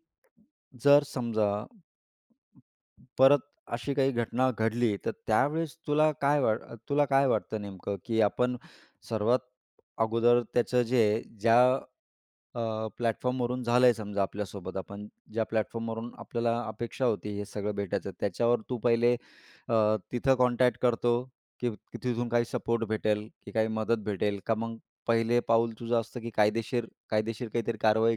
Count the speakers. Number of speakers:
one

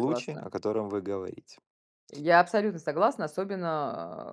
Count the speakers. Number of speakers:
two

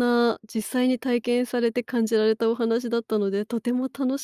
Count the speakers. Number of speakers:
one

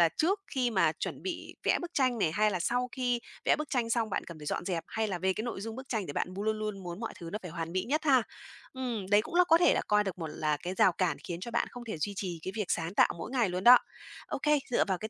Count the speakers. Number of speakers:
one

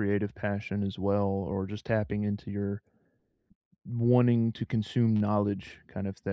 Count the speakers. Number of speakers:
one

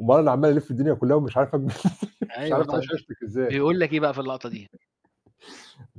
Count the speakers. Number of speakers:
two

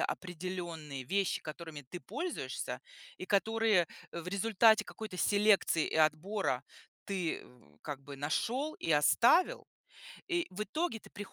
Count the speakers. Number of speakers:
one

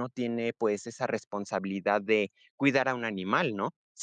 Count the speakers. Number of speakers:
one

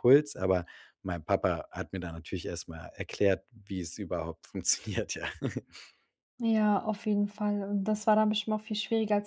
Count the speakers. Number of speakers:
two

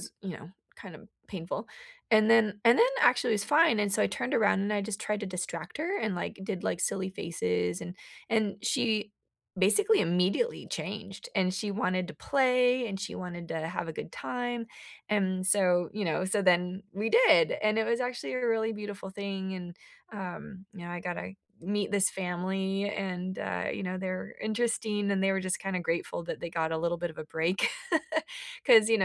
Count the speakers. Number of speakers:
one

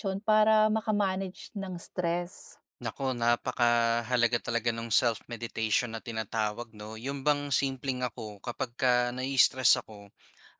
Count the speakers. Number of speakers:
two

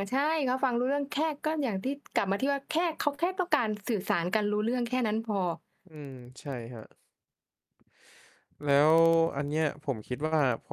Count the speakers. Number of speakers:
two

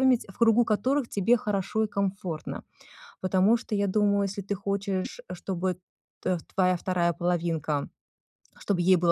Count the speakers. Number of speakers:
one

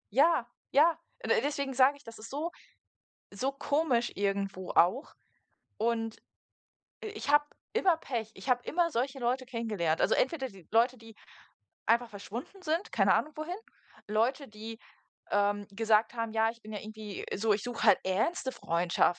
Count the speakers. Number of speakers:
one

